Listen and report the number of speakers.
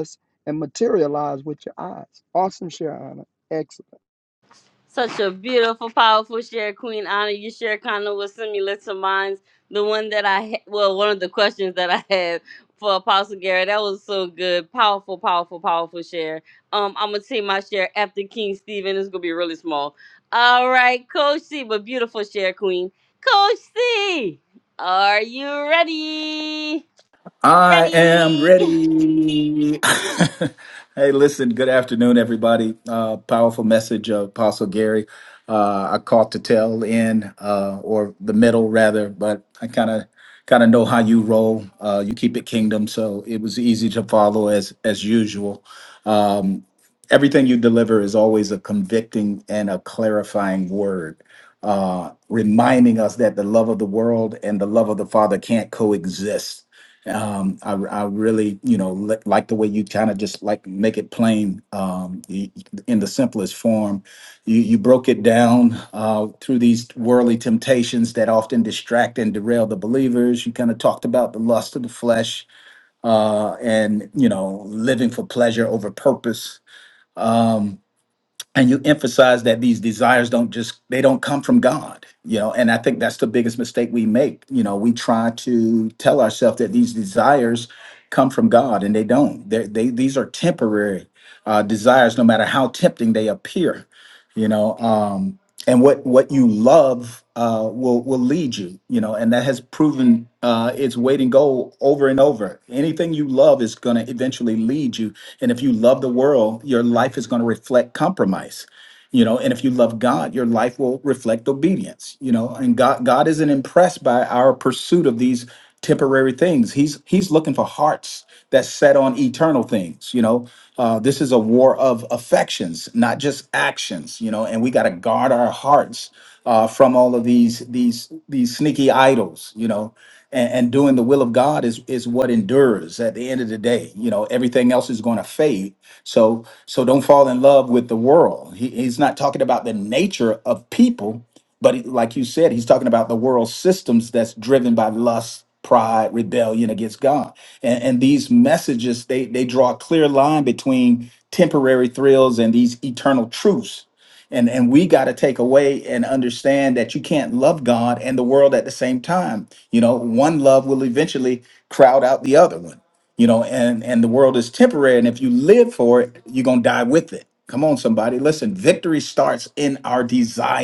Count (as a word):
three